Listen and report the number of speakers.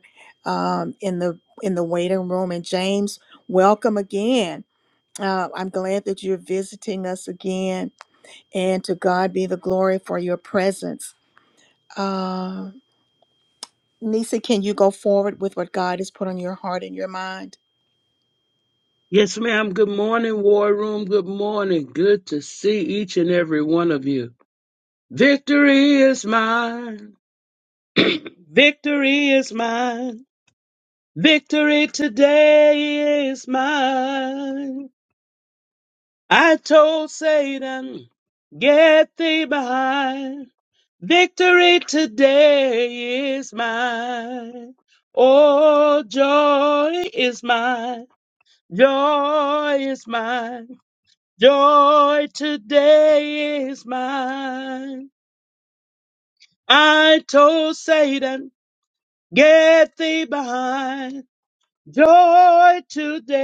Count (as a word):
two